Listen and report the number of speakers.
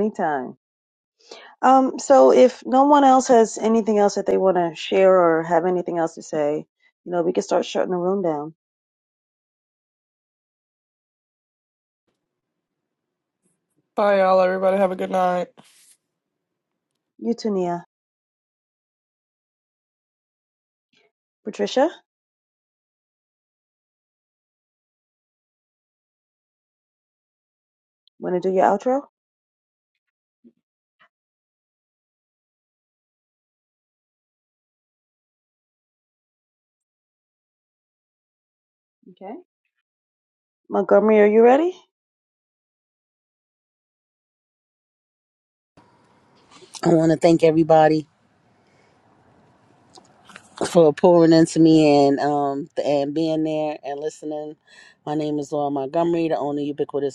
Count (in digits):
3